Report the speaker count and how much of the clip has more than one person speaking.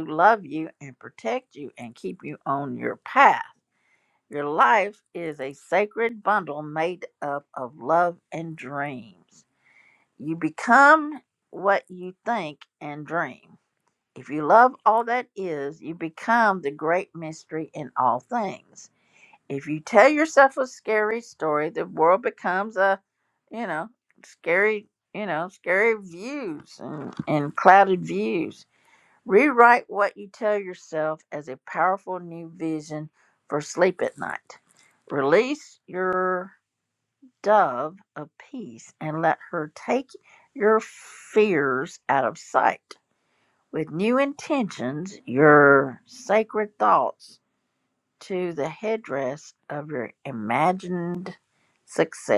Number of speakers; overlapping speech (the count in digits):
1, no overlap